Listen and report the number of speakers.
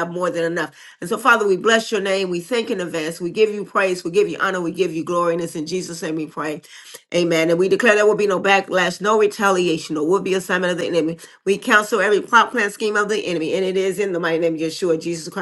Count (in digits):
1